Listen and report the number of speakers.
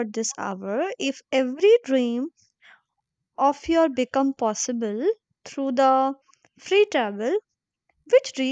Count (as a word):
one